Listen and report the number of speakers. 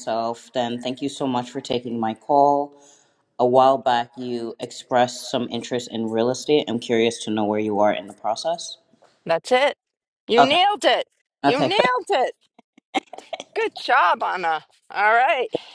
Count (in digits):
2